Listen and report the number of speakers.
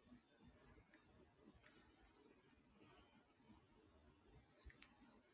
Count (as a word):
zero